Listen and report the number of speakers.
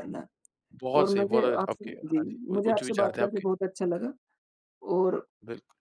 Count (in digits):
2